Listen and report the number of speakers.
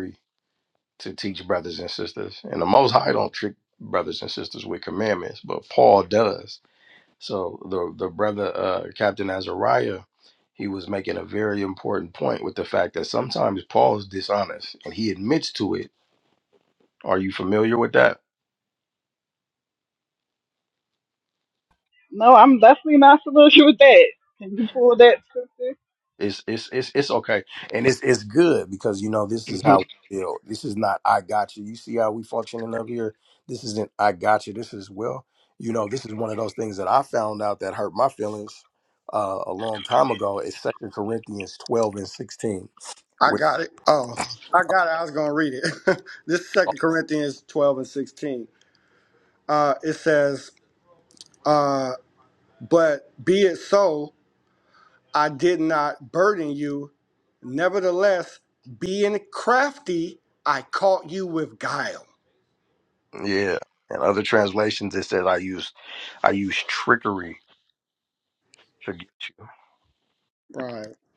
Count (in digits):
3